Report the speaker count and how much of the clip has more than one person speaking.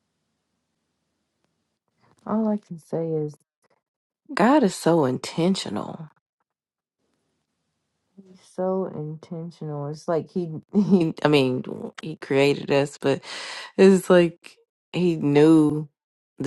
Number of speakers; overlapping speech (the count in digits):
1, no overlap